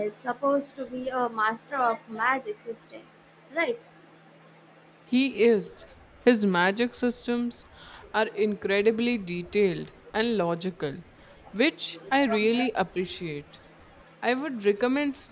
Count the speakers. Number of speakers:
2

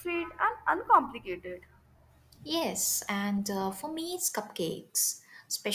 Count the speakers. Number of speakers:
2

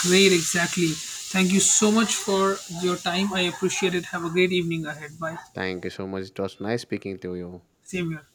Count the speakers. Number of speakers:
2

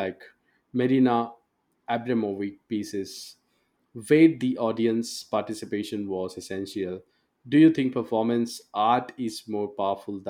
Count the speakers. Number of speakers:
1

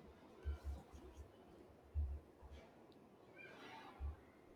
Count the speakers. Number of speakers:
0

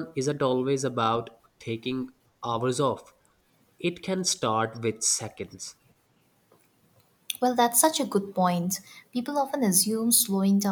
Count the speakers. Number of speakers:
2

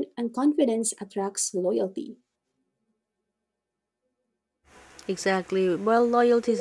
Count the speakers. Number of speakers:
2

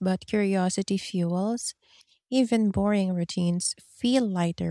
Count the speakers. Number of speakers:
1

